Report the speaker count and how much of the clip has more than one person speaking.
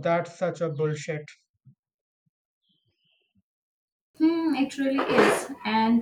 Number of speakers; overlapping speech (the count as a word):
two, no overlap